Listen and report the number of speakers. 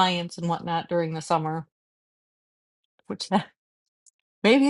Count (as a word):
one